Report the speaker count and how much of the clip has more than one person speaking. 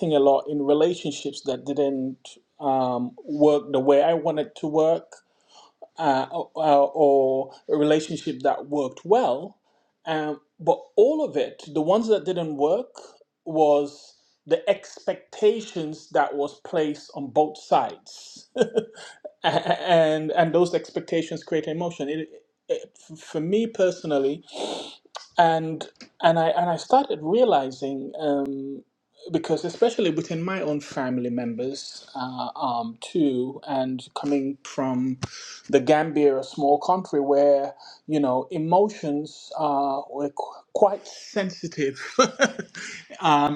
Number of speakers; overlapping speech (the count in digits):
1, no overlap